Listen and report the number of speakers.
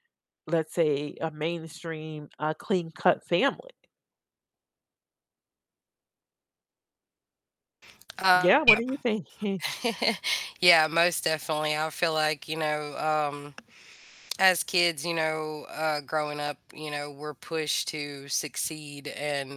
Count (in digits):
2